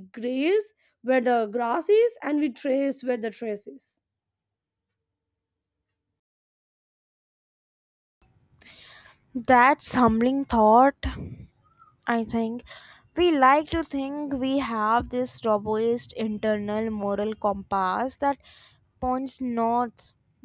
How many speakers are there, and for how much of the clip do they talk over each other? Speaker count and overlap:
2, no overlap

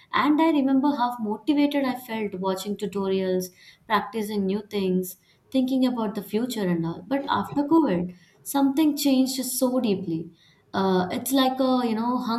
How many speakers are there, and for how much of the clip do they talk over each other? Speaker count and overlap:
1, no overlap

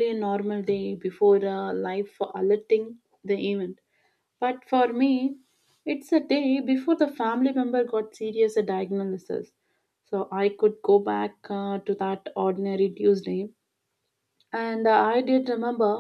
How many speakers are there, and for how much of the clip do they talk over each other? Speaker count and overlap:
1, no overlap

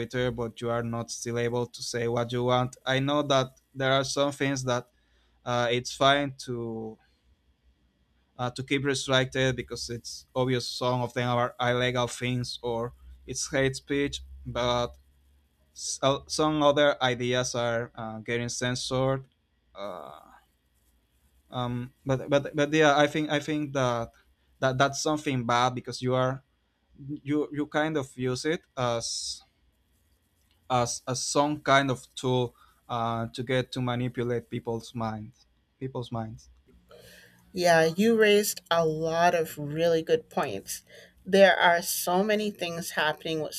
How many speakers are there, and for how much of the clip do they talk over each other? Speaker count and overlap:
2, no overlap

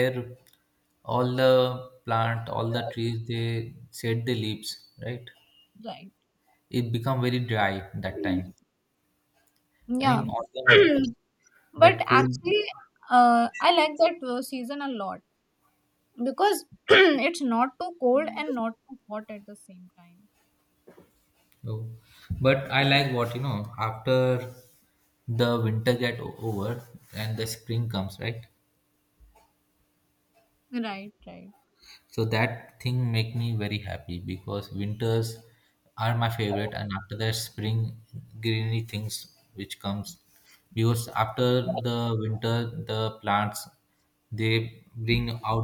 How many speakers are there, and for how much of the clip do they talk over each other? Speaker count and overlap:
2, about 2%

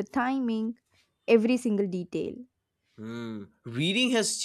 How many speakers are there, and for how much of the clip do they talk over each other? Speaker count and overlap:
2, no overlap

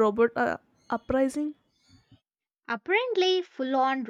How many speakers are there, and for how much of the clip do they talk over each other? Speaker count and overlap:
2, no overlap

